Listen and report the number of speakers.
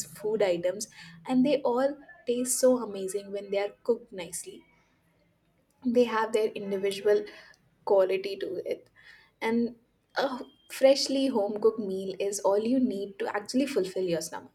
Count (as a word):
one